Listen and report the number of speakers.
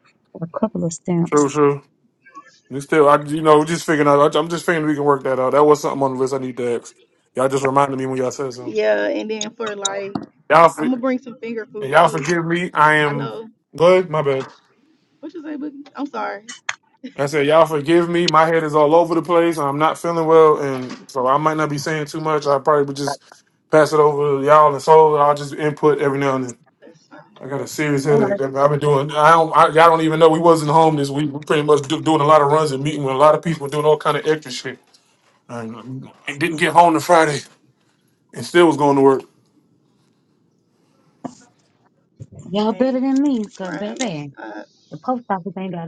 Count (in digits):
3